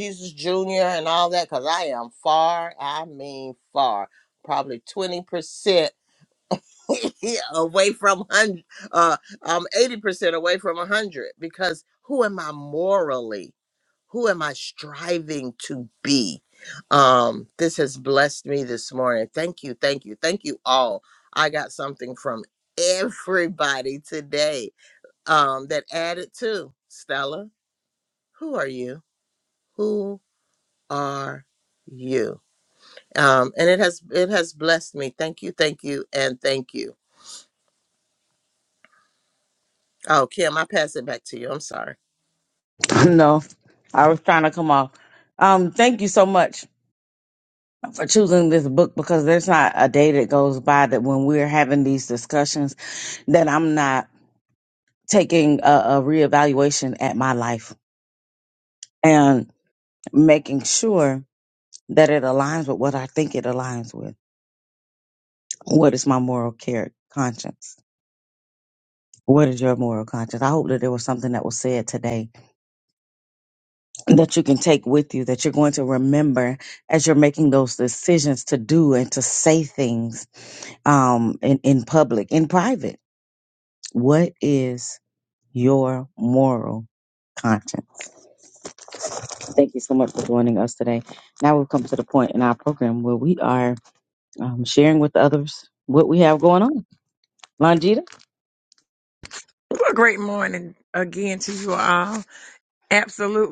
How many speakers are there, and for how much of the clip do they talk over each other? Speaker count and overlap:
3, no overlap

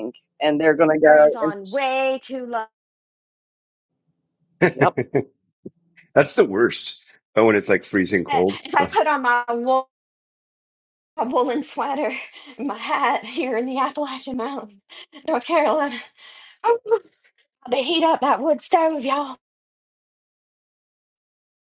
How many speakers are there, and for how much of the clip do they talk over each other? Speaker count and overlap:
3, about 5%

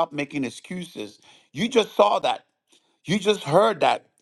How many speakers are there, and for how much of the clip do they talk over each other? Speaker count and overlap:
1, no overlap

